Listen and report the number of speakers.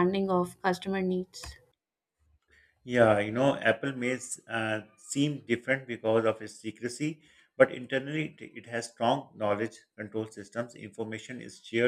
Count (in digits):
2